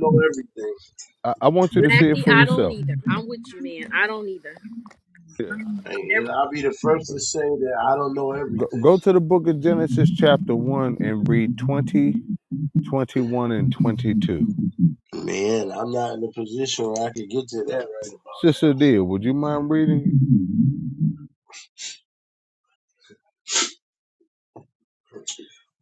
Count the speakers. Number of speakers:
3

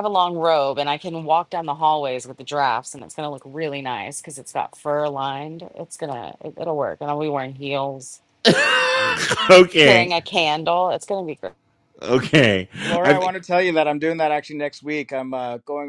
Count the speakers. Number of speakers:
3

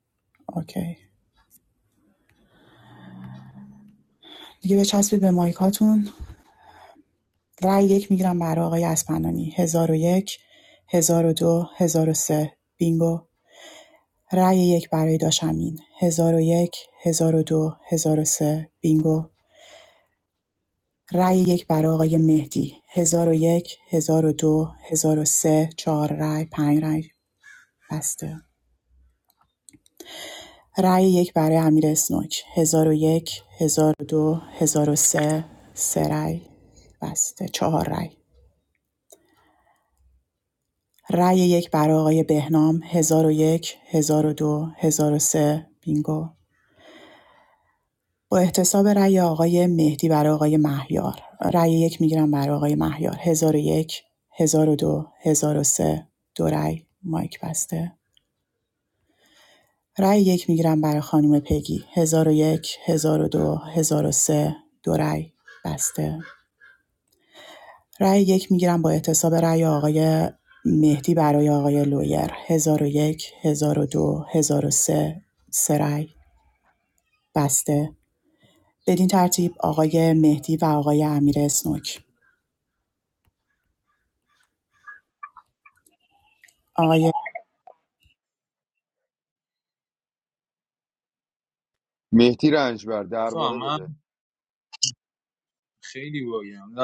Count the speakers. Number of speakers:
3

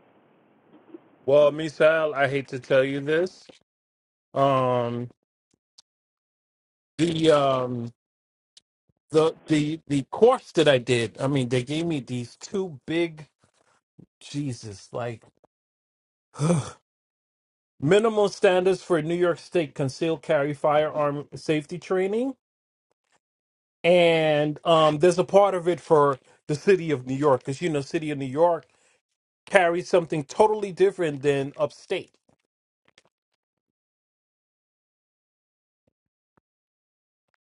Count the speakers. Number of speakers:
1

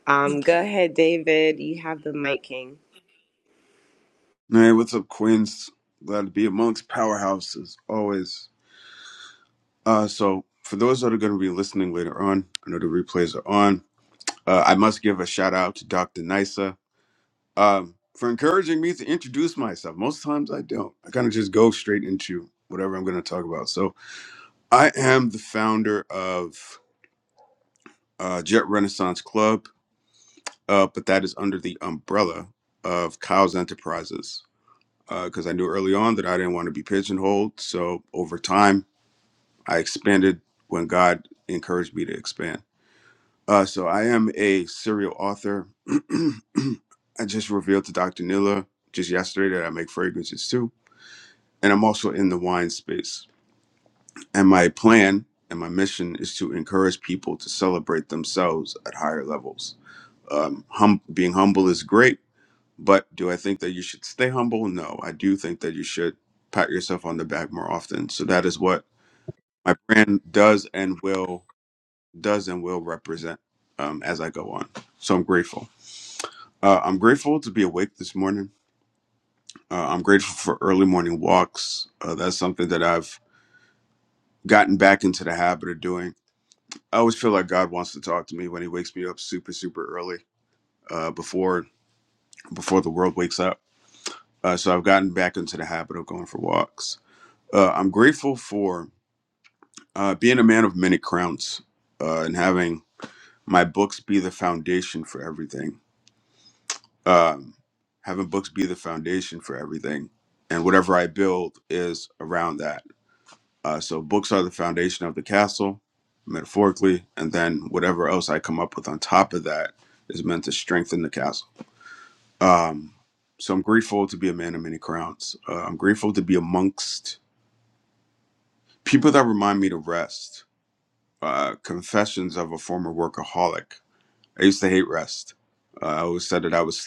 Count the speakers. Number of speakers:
2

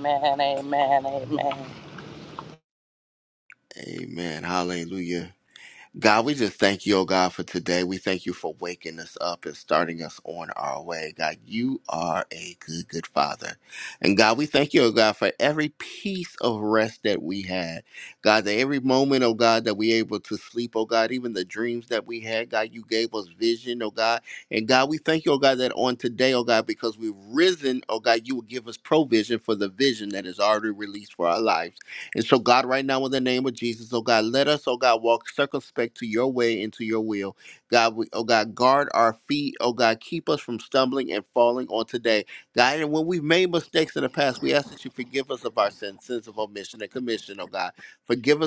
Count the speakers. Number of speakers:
2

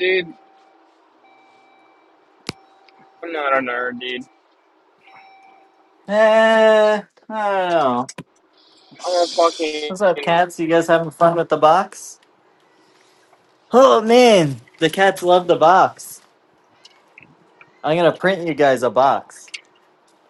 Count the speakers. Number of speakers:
2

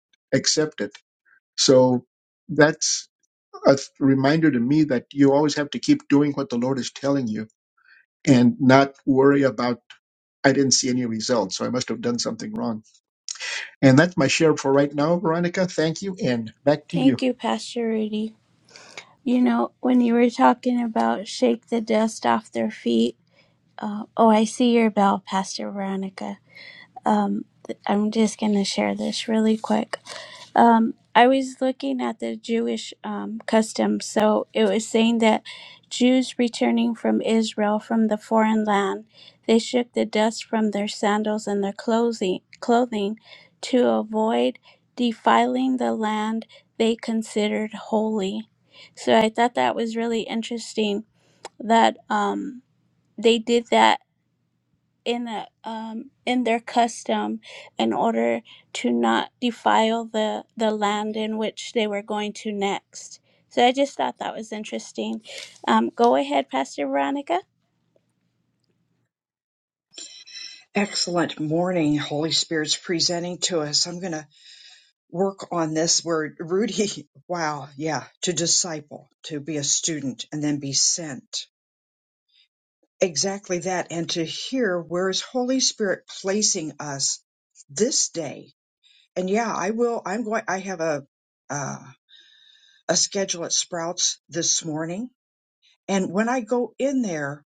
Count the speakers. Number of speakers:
3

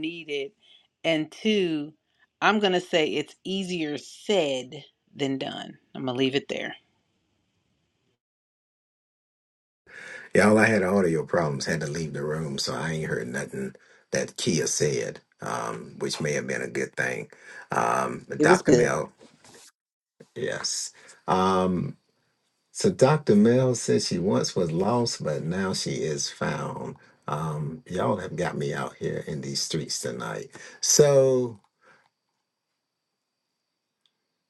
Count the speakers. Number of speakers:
2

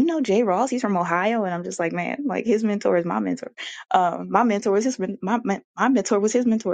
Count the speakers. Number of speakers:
1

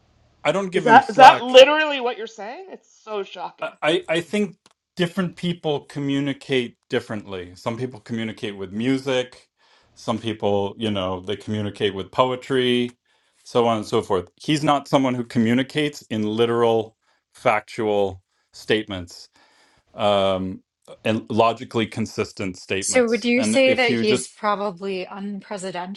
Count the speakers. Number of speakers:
3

